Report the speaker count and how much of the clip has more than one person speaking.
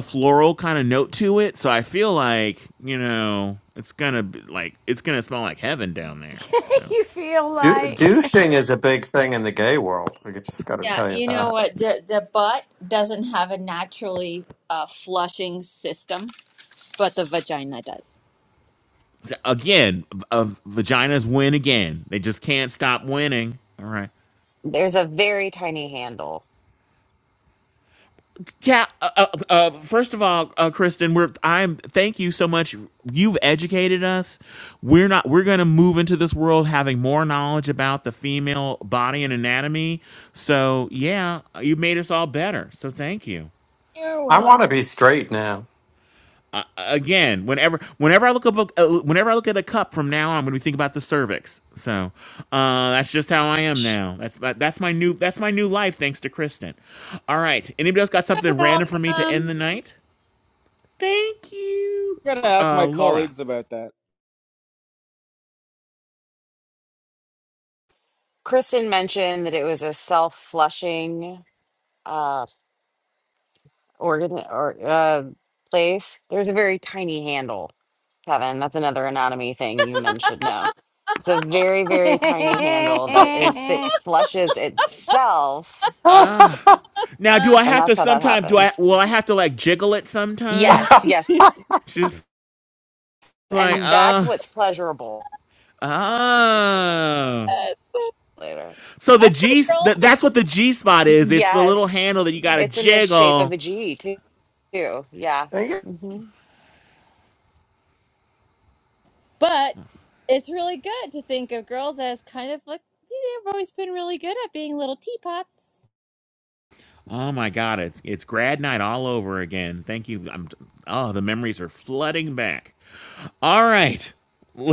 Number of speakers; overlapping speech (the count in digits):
6, about 8%